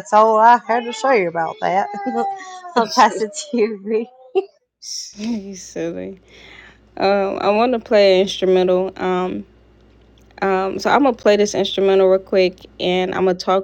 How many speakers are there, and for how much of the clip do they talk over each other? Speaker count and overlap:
two, no overlap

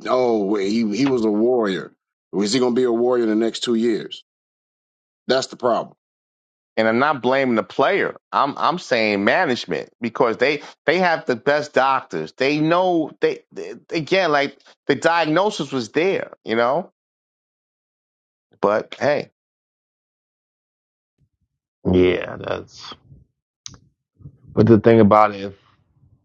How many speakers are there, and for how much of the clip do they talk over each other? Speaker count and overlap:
three, no overlap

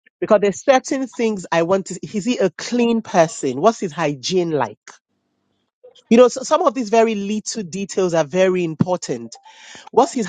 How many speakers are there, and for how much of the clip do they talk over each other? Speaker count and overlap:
one, no overlap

